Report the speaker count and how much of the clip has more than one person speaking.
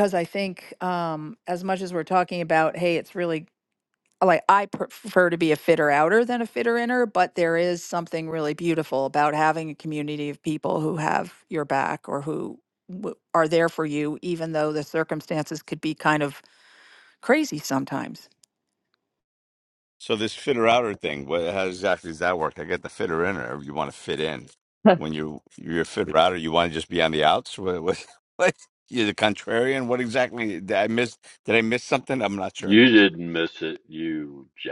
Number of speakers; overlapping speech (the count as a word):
three, under 1%